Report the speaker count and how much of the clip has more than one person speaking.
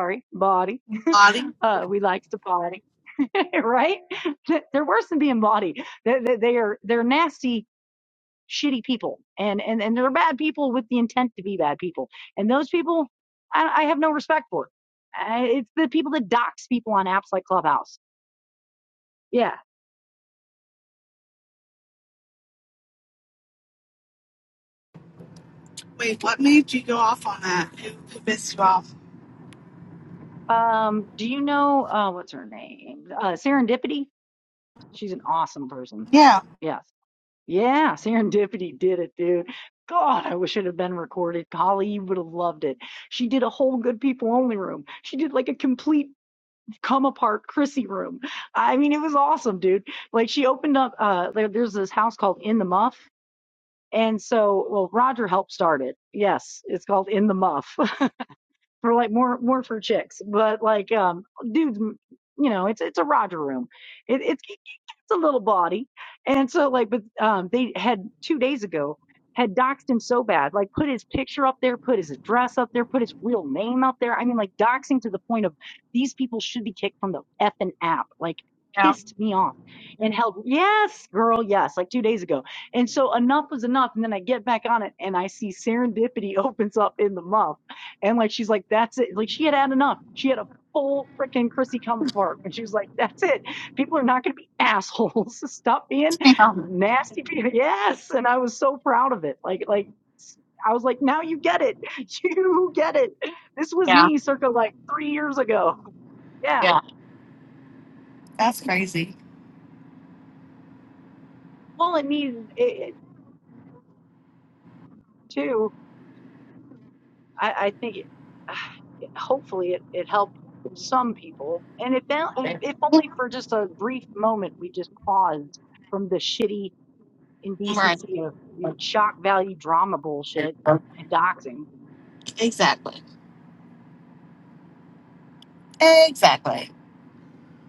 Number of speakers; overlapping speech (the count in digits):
2, about 1%